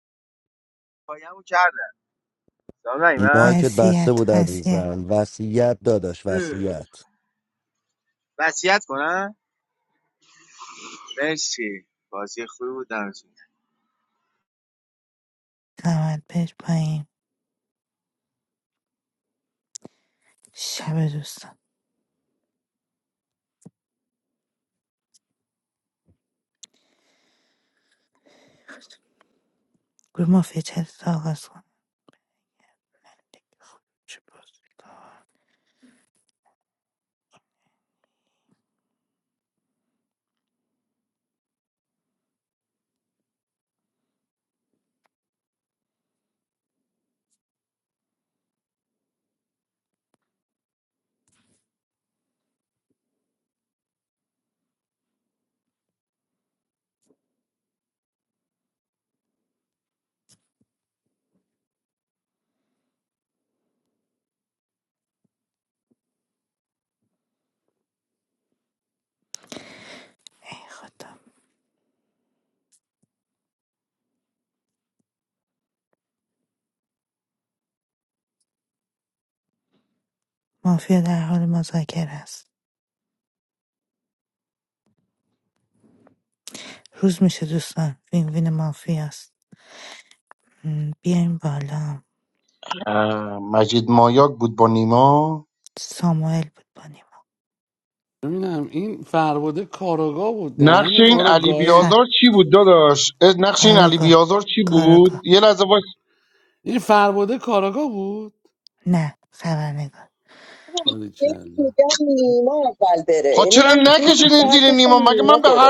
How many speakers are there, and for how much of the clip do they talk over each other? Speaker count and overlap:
six, about 6%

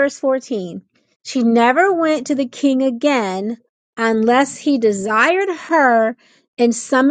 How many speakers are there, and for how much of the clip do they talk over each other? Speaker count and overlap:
one, no overlap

